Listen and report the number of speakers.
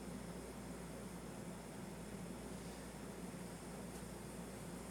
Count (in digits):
0